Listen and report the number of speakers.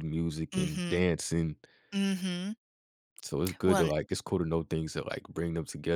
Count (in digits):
2